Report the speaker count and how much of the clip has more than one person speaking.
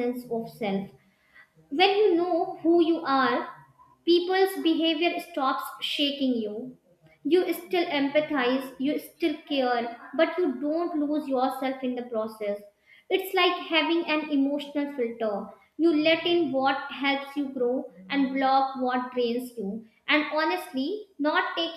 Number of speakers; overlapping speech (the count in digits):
1, no overlap